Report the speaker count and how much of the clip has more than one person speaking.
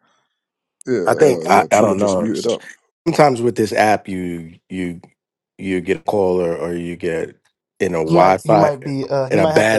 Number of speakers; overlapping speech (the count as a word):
three, about 25%